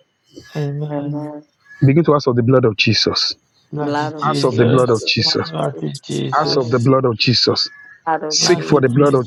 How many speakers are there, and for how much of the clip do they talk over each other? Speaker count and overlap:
three, about 45%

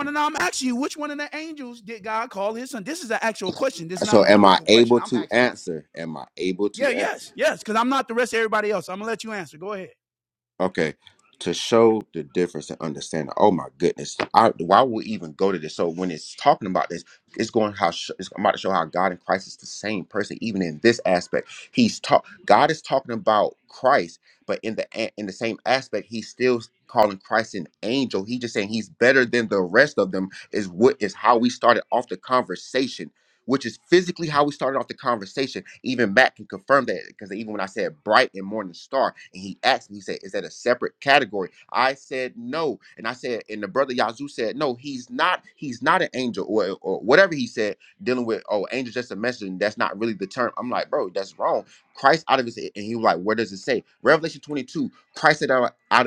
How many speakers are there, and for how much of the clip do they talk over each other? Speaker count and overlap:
two, about 3%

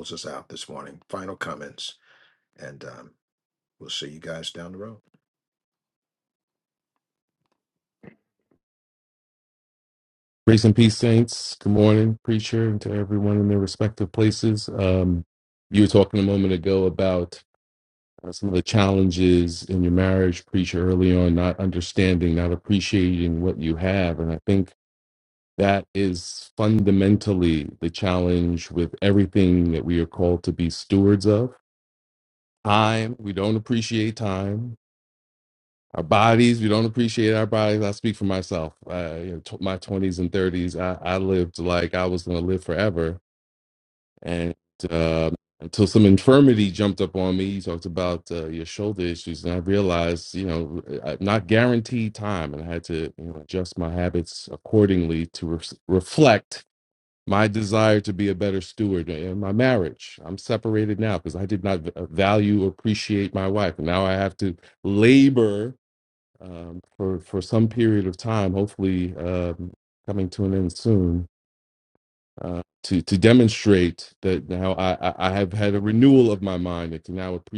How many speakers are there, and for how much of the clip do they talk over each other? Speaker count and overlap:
two, no overlap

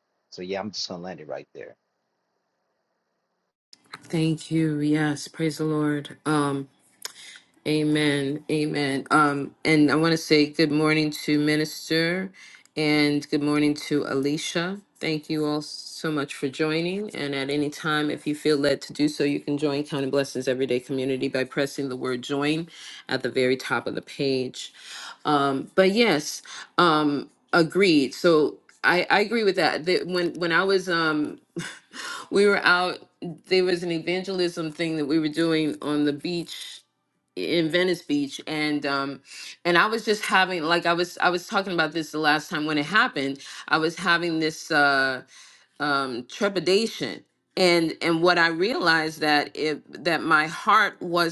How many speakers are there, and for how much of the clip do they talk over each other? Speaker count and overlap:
two, no overlap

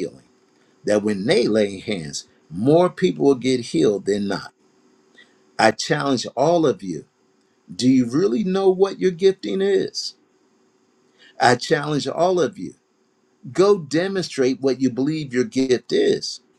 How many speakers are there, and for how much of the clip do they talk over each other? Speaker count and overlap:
one, no overlap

